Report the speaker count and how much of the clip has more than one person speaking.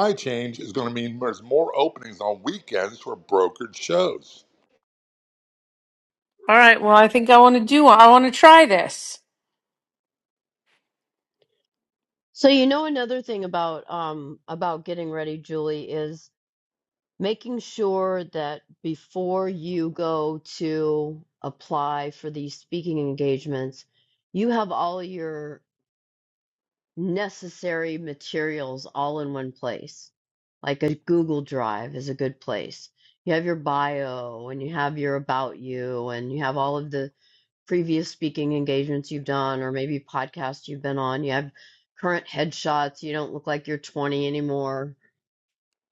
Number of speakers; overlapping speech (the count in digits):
3, no overlap